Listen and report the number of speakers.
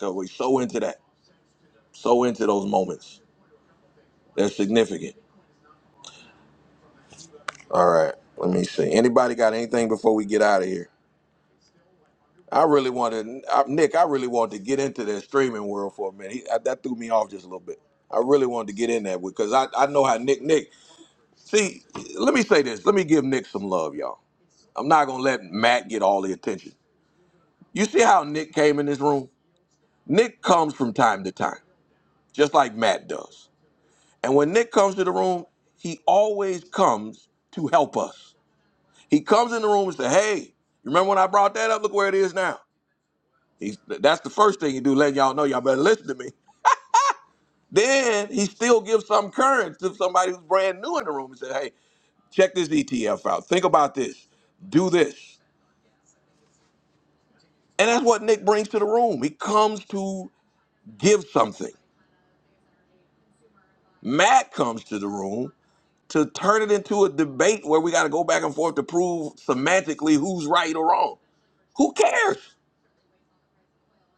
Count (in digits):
1